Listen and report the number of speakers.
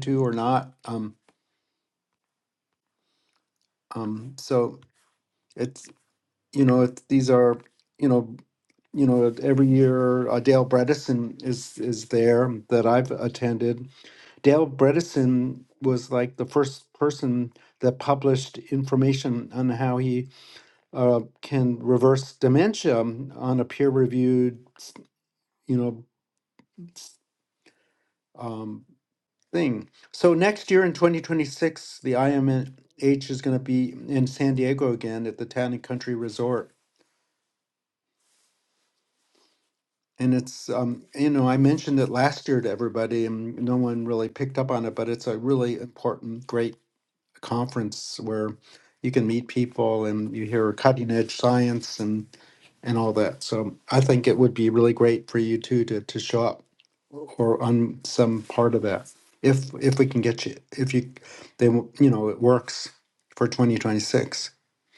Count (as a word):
one